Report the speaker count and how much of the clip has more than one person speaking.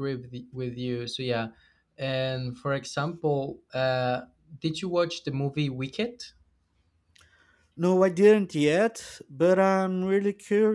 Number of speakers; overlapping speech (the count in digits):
2, no overlap